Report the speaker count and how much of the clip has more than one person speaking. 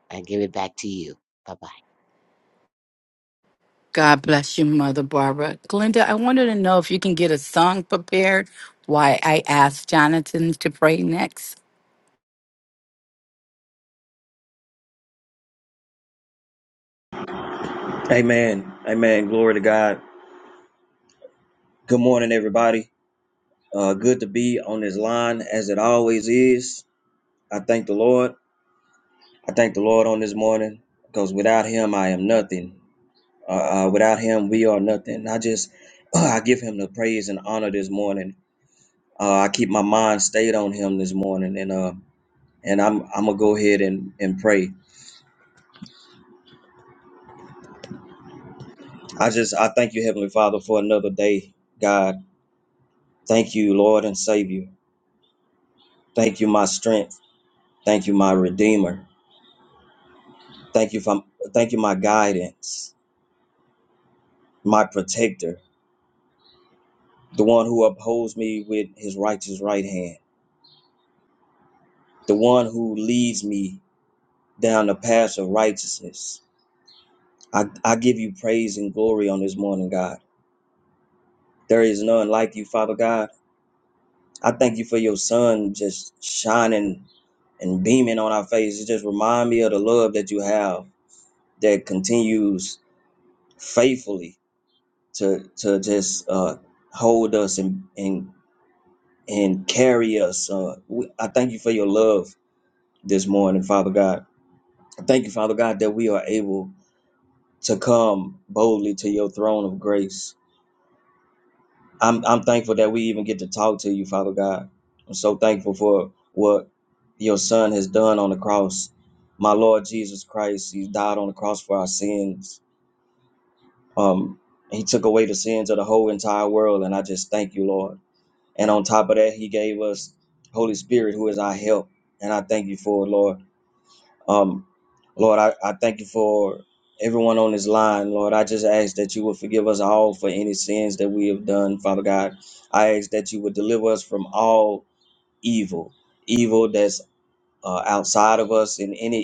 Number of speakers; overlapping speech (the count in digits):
3, no overlap